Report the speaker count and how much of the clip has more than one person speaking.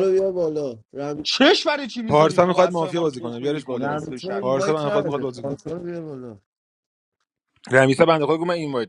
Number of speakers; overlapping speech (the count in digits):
3, about 38%